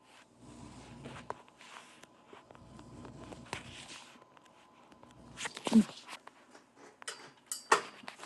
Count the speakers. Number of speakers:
0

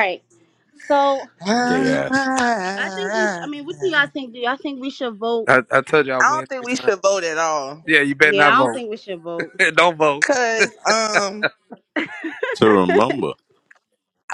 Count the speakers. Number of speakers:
4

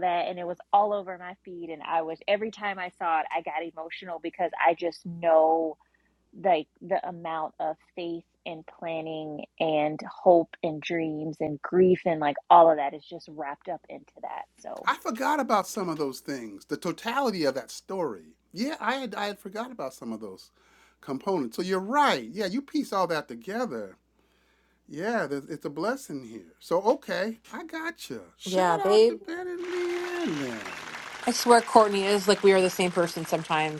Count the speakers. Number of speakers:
3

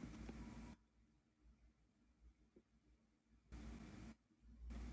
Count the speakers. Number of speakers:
0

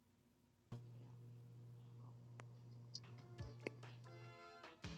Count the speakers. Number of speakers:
0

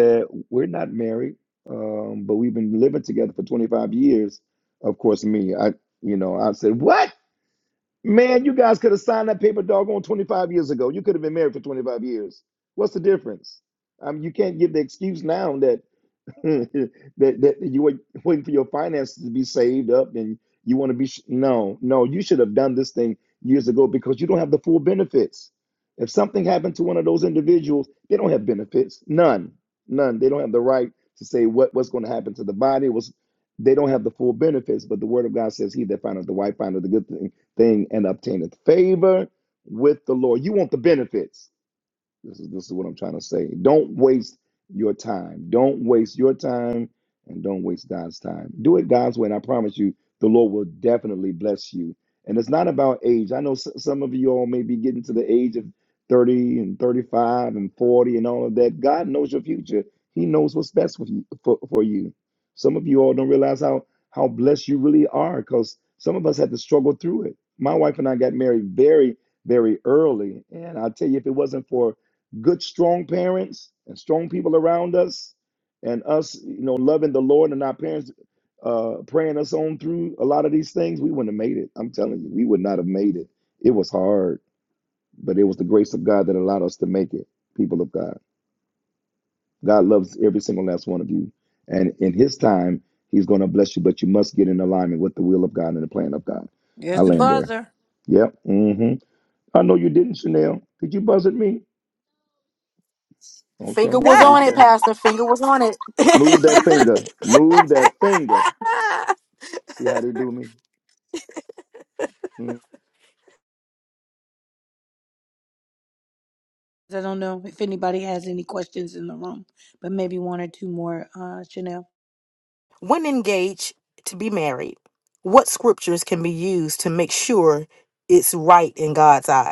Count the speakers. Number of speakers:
3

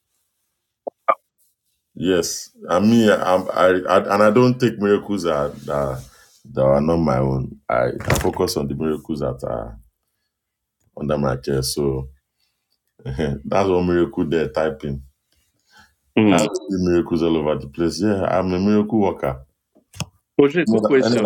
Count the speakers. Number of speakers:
2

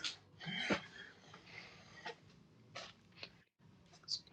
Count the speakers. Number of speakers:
0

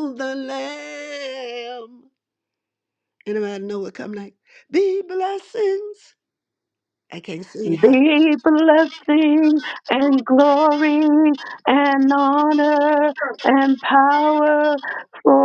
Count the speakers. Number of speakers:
2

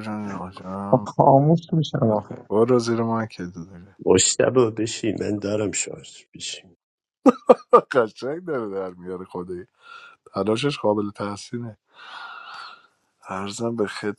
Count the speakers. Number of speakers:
3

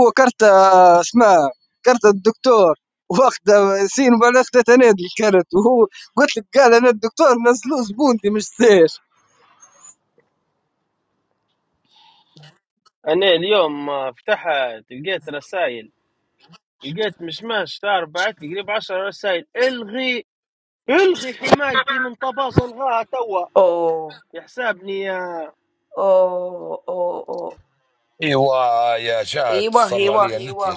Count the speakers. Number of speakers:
4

